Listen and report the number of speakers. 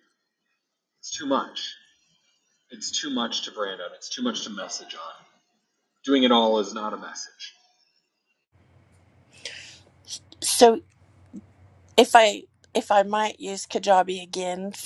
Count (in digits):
2